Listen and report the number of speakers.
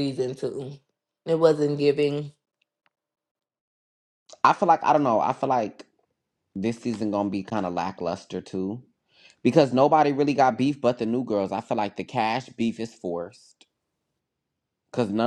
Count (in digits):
2